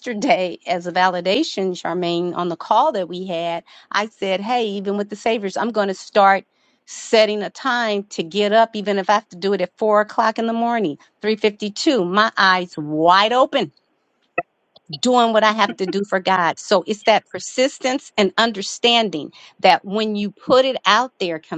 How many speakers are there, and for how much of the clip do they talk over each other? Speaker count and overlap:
one, no overlap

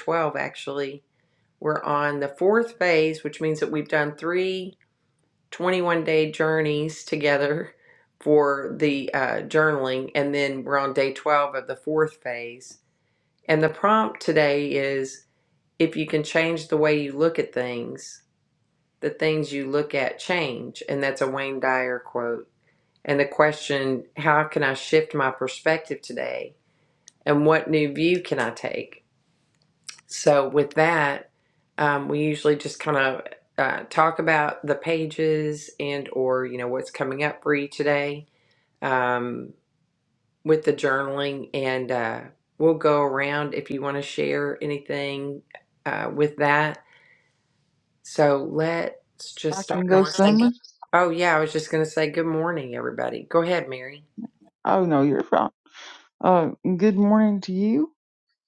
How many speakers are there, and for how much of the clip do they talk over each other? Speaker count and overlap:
two, about 2%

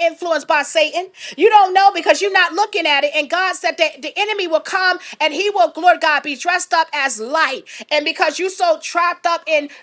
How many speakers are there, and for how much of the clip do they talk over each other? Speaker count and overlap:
one, no overlap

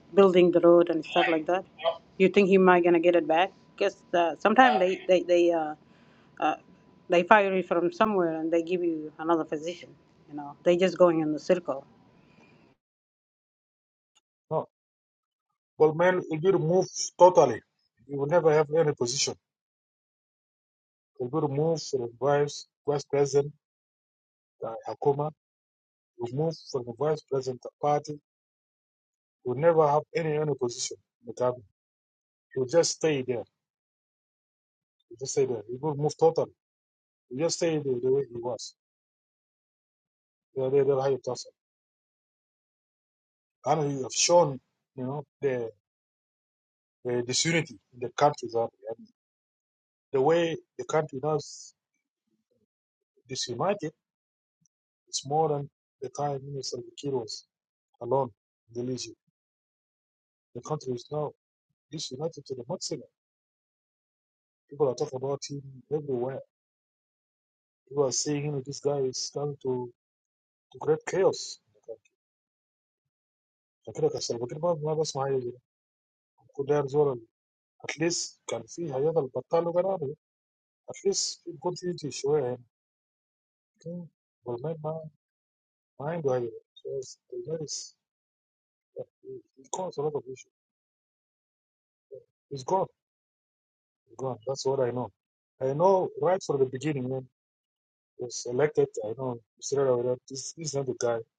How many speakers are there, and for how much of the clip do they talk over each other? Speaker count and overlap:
two, no overlap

